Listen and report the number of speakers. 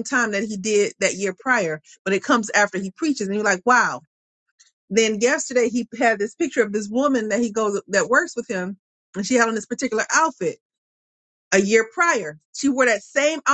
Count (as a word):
one